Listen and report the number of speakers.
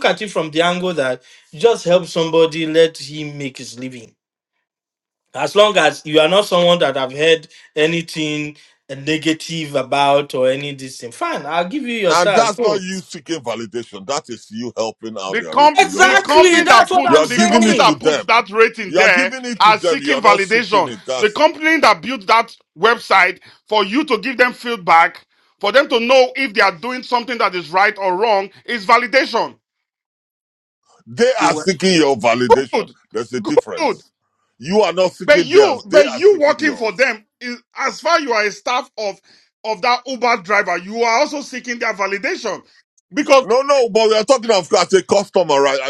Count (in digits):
3